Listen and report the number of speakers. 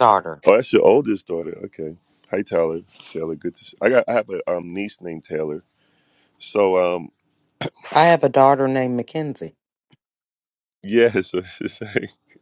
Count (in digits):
2